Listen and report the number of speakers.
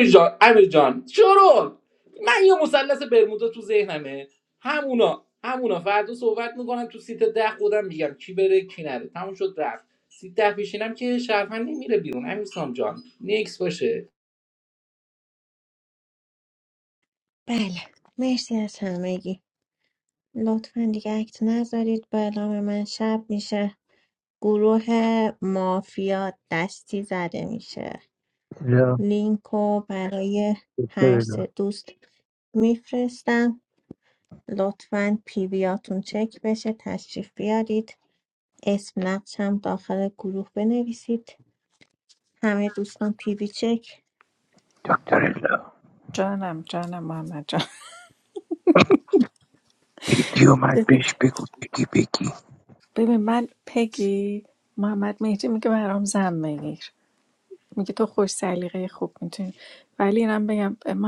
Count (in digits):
4